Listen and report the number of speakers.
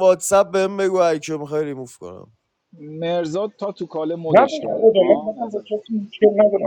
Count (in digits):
3